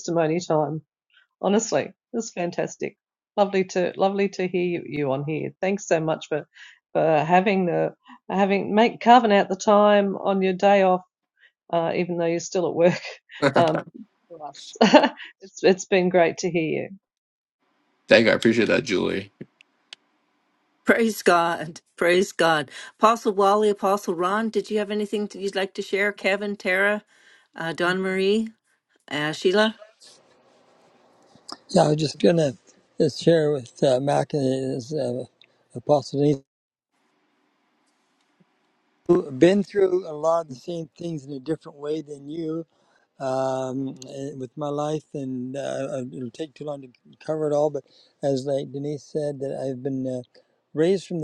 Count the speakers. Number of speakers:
four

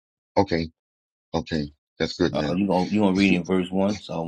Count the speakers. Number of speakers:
two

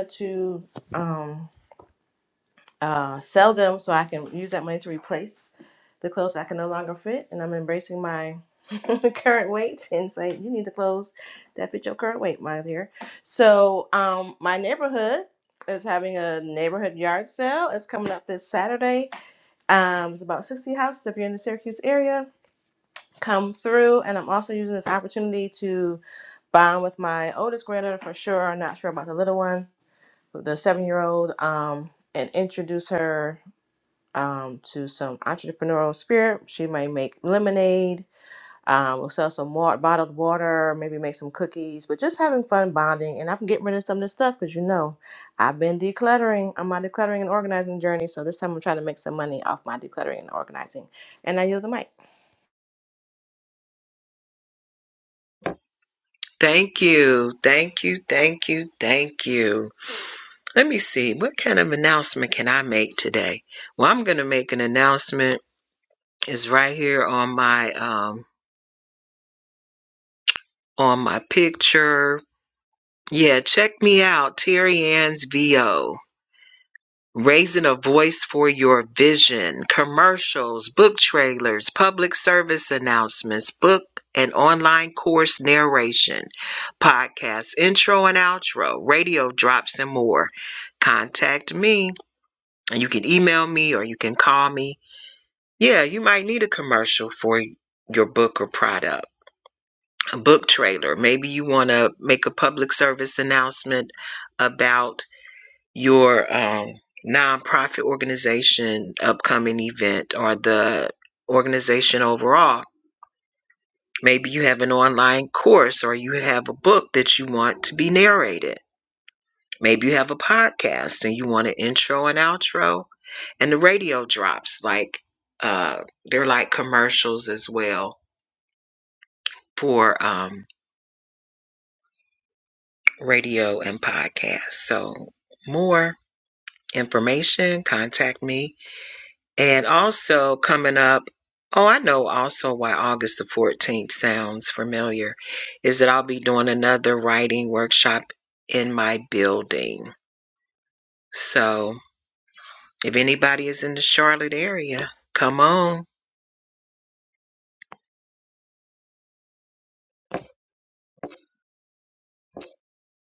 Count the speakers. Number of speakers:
two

